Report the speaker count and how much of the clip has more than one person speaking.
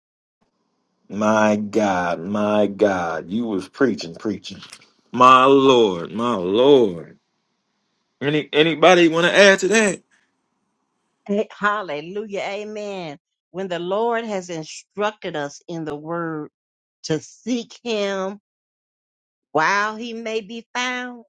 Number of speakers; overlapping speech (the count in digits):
2, no overlap